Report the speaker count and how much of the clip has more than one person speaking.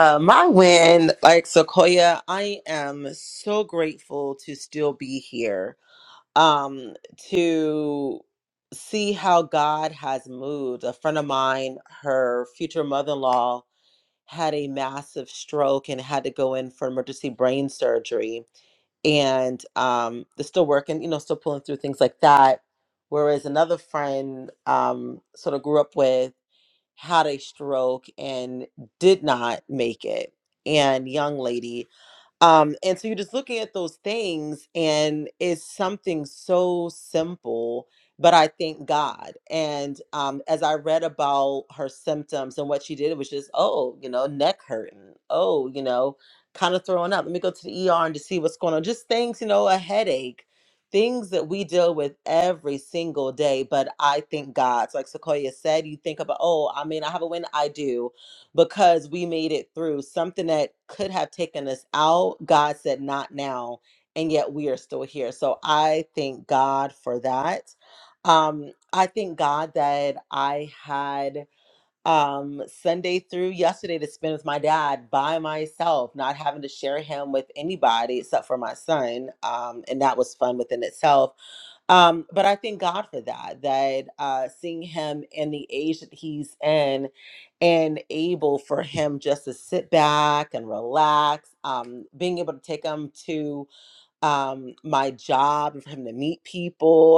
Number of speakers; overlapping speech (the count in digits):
1, no overlap